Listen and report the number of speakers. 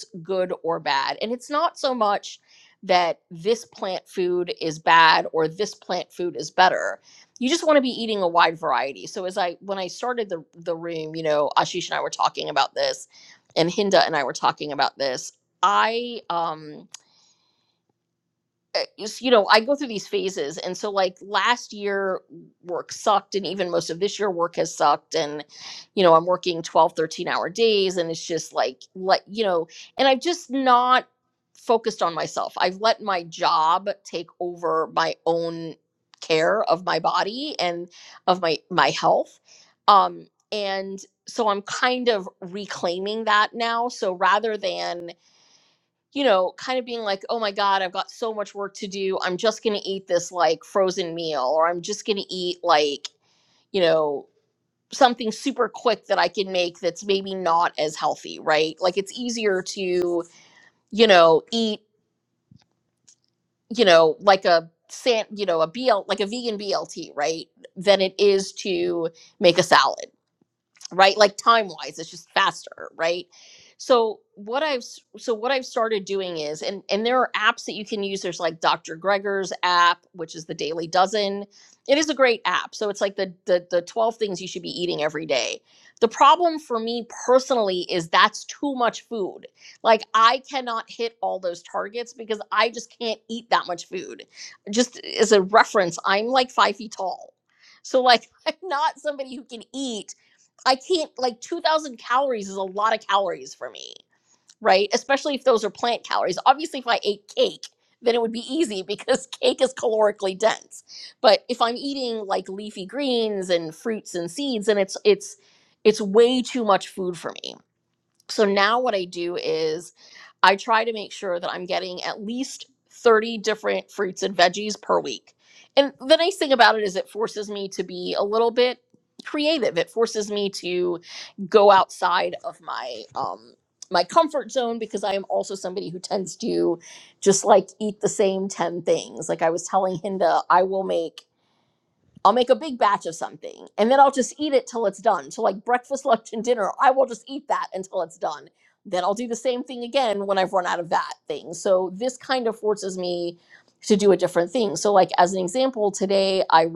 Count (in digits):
1